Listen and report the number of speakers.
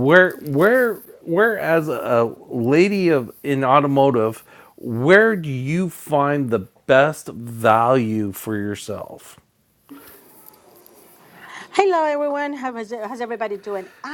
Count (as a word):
two